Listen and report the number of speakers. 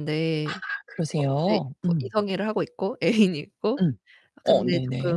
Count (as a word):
two